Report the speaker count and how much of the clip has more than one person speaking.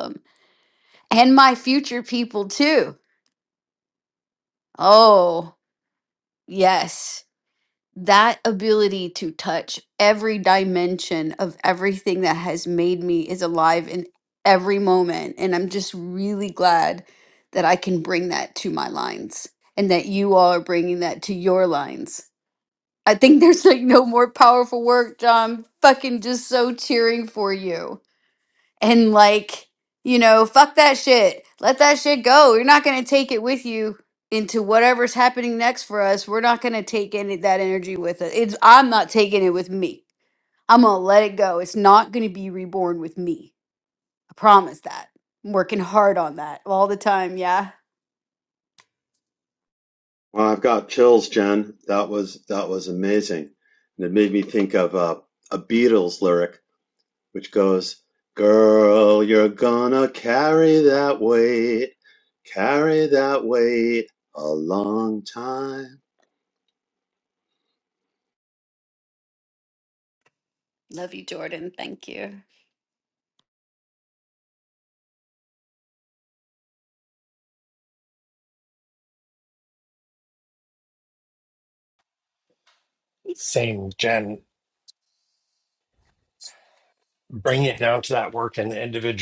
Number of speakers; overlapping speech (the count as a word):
three, no overlap